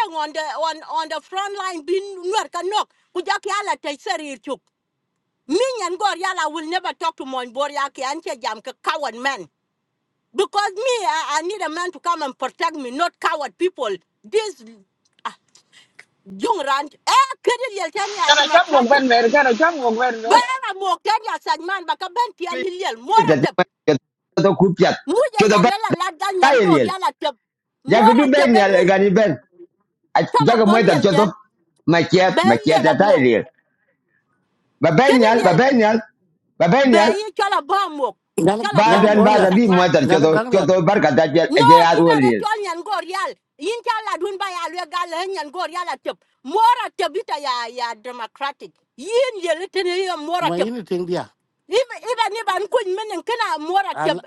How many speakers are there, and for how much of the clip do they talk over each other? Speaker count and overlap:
4, about 15%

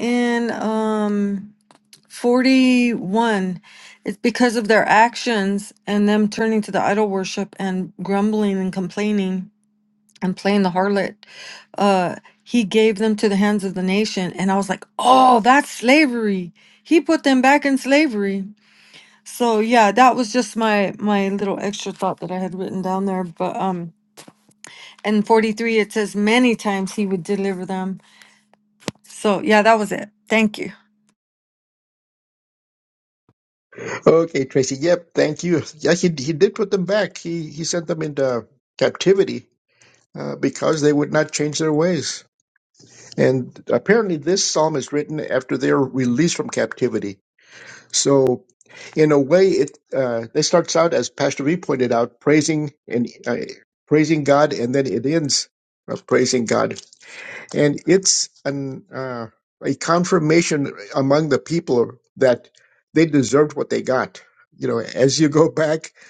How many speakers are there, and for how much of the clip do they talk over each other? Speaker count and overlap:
2, no overlap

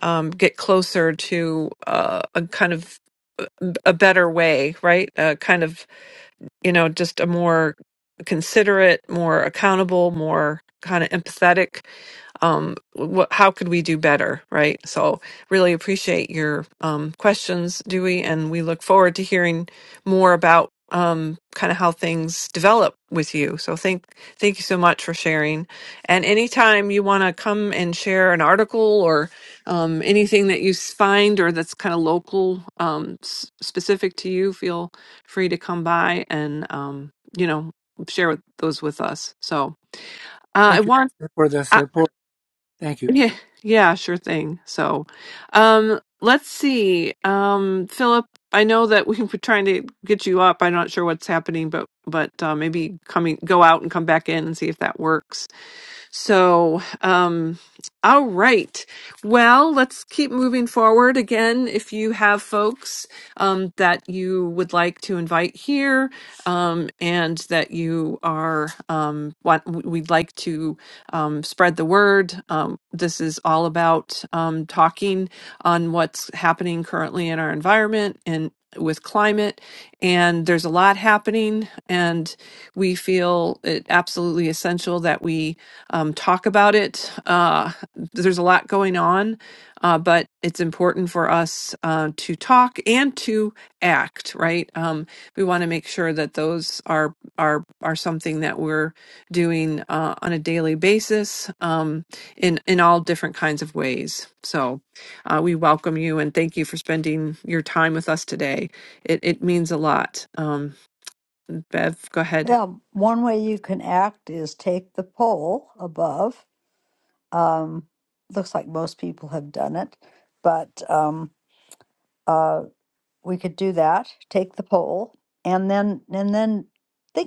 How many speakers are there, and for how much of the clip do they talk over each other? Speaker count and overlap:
3, under 1%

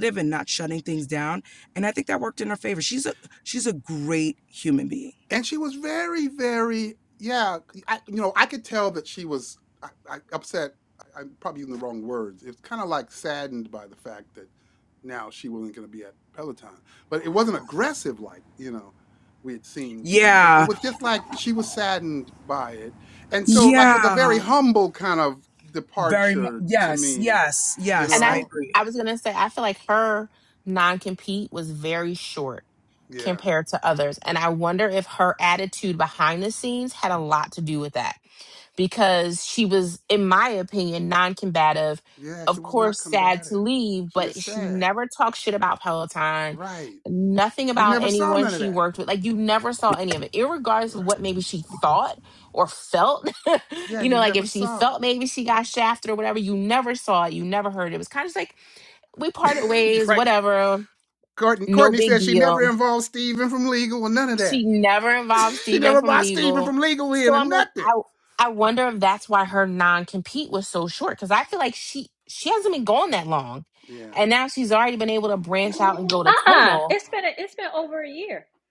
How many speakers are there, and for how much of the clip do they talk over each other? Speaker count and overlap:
4, about 15%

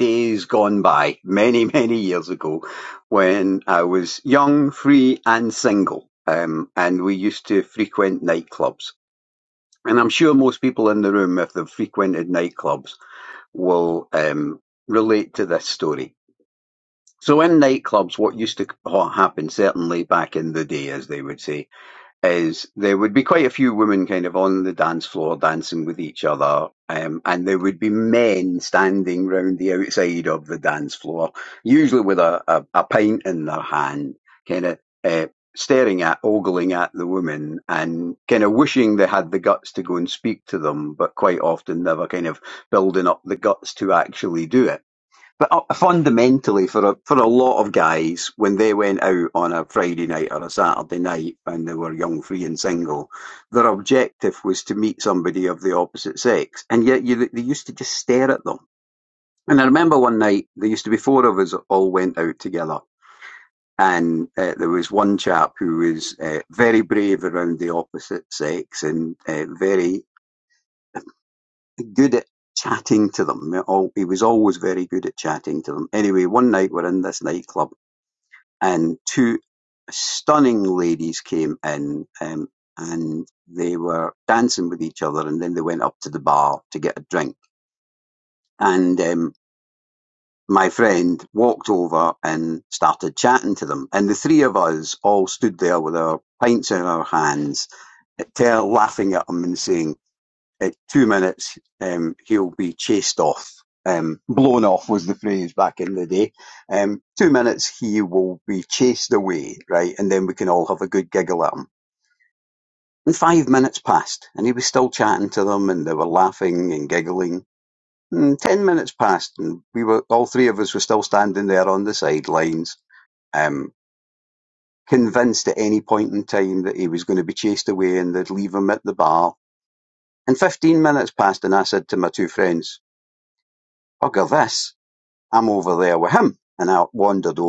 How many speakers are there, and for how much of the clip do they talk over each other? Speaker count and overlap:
1, no overlap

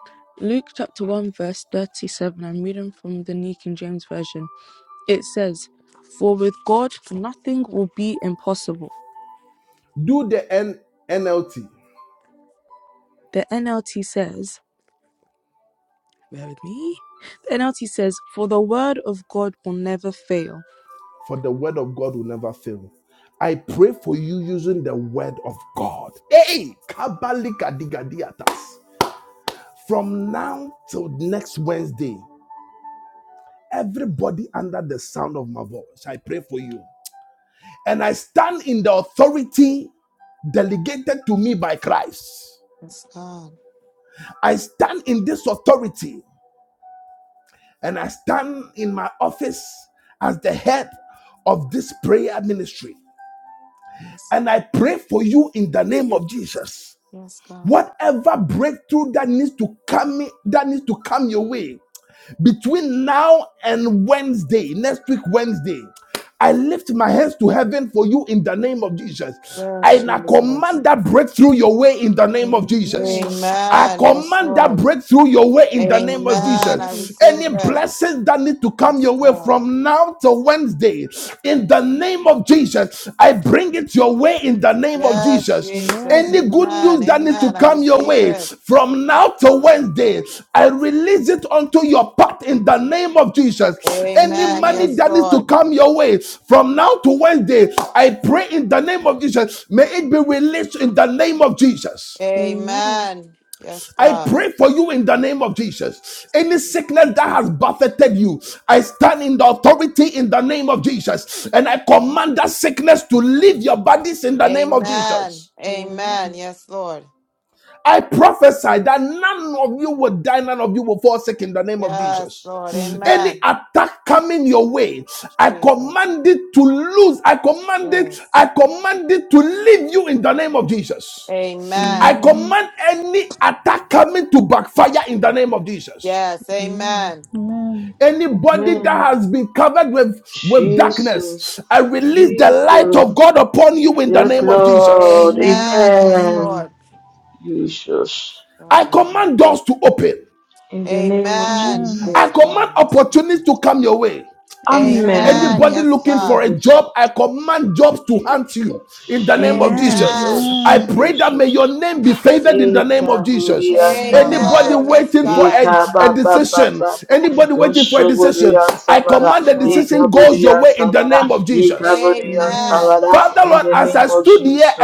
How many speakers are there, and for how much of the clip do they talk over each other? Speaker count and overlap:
5, about 23%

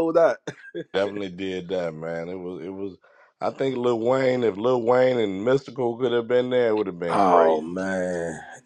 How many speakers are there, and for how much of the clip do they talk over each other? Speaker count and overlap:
2, about 6%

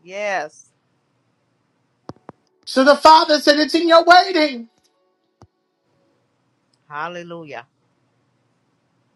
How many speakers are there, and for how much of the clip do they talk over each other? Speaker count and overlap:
2, no overlap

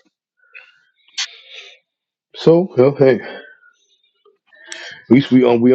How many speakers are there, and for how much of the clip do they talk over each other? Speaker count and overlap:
1, no overlap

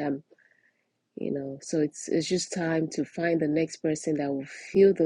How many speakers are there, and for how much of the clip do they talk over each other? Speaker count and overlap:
1, no overlap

